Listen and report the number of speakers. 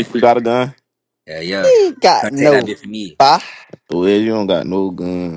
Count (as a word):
three